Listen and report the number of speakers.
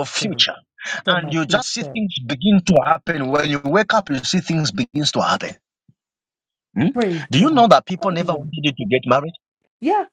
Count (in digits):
2